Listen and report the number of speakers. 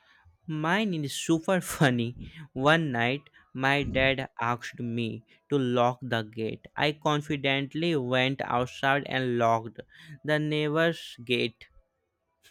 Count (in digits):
1